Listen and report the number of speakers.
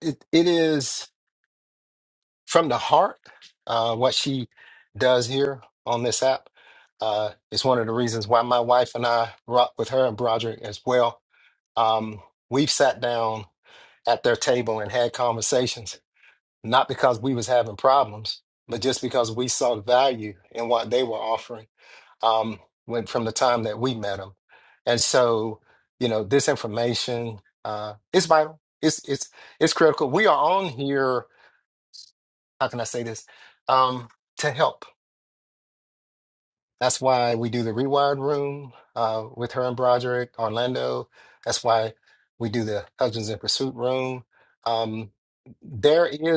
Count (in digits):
1